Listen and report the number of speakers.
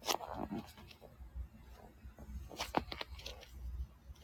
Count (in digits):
0